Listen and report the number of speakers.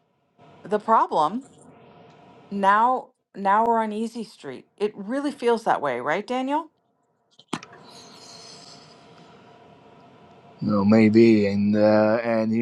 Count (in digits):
2